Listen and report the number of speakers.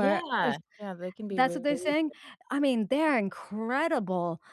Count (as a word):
two